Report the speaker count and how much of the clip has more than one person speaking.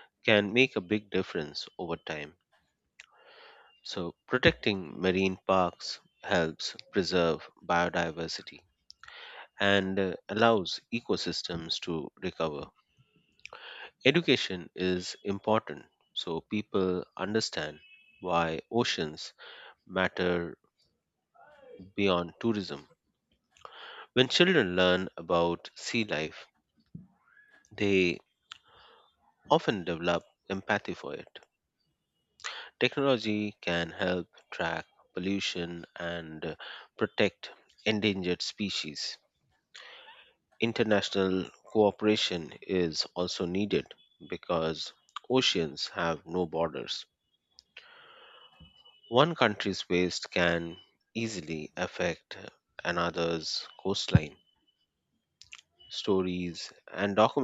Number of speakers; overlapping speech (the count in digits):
1, no overlap